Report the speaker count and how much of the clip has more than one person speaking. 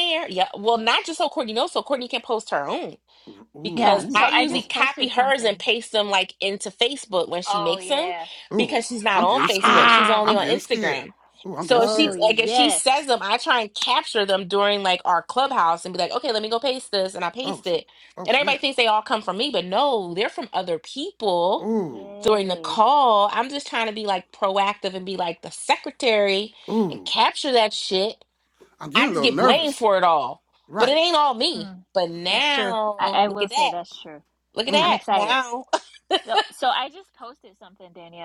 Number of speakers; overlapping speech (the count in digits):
3, about 28%